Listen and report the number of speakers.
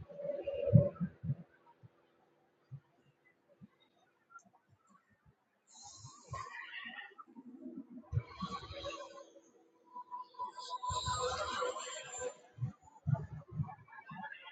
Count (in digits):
0